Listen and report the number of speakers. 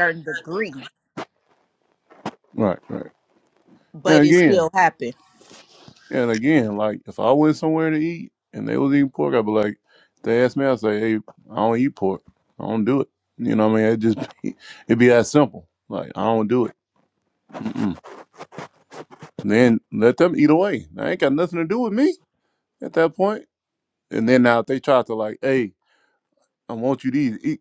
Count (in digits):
2